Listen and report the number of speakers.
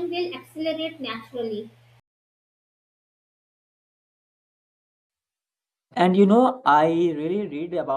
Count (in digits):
2